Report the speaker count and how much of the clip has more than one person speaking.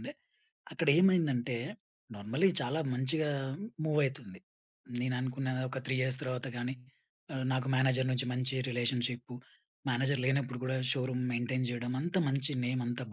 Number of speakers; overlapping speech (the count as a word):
one, no overlap